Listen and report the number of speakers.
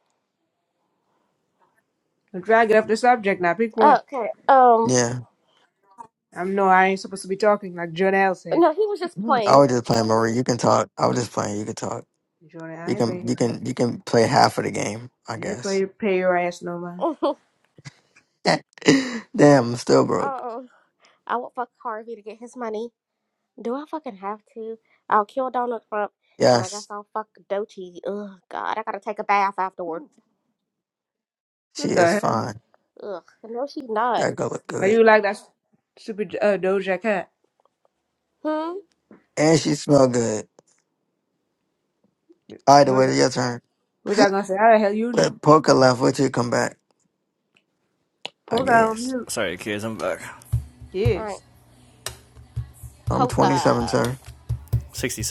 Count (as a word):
four